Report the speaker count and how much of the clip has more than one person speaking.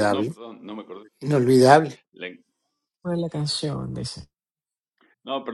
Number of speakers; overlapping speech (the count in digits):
3, about 4%